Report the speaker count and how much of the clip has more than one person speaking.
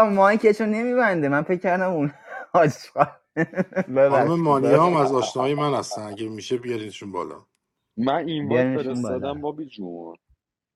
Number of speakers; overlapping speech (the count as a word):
three, about 16%